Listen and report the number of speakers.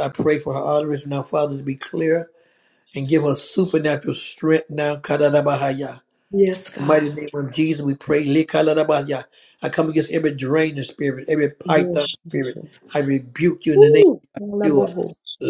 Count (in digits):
2